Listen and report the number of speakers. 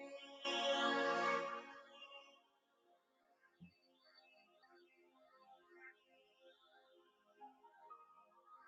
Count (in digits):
0